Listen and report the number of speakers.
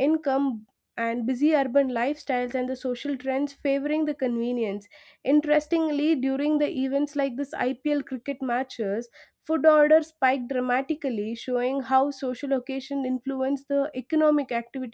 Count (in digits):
1